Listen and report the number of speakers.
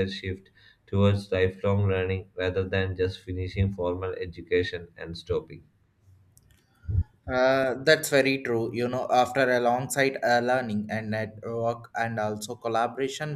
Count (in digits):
2